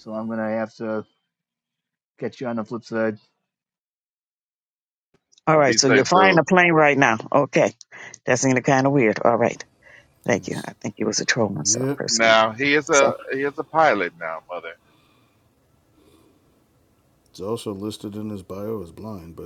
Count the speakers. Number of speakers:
4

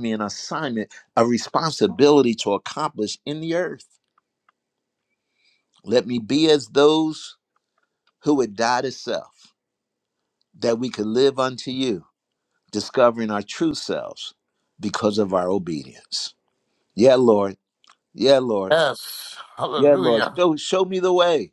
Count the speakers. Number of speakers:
2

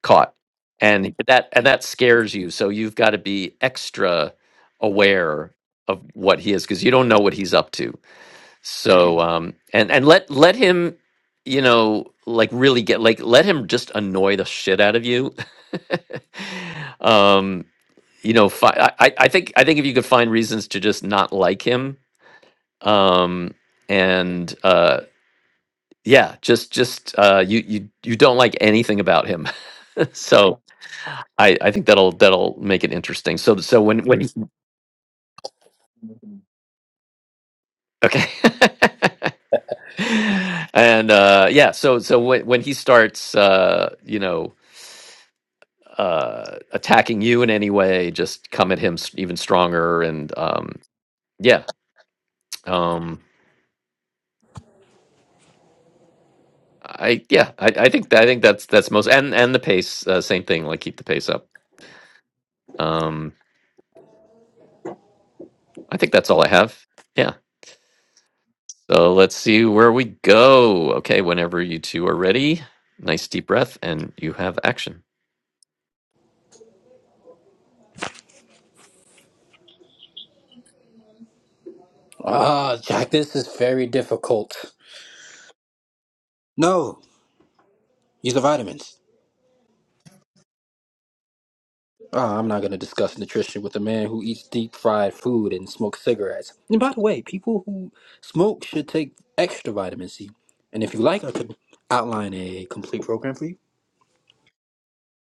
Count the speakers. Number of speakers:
2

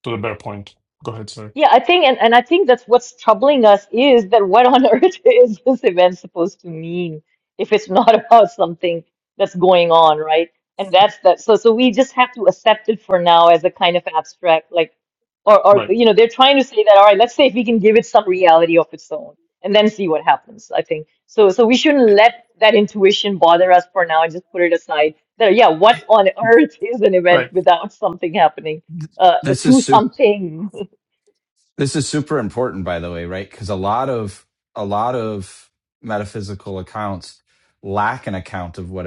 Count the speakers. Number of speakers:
3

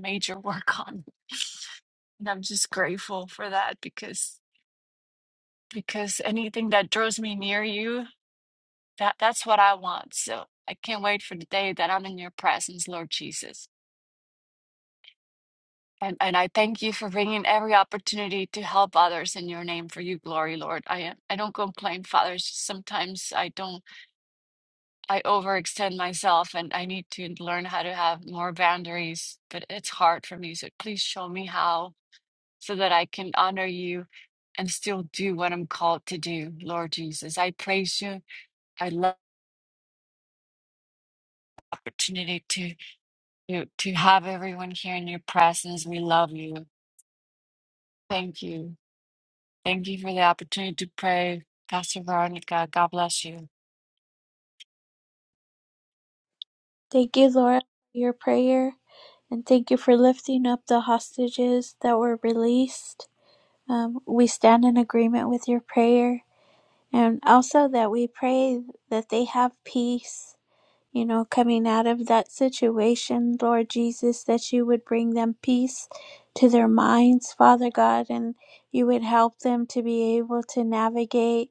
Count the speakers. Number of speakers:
2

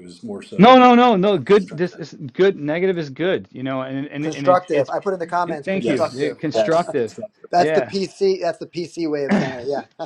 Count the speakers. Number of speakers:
3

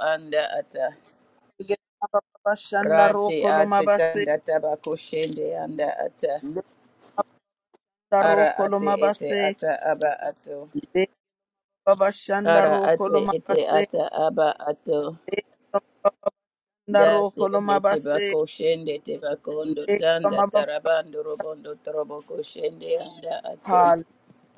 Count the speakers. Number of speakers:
2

